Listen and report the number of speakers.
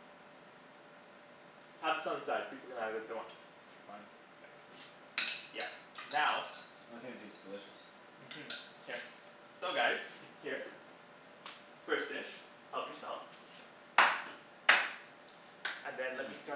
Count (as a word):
two